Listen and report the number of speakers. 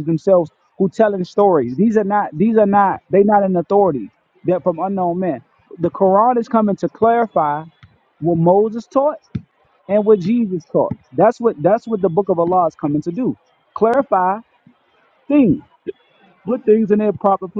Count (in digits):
1